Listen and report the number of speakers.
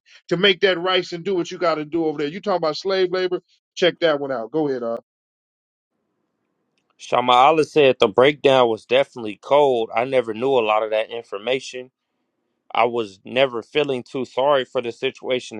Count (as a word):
two